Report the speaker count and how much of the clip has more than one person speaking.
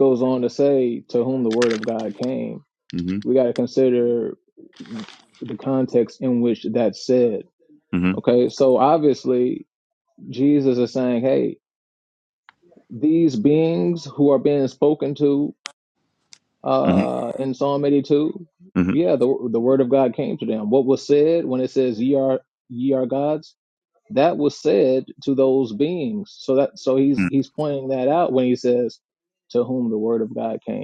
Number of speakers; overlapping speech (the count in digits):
2, about 2%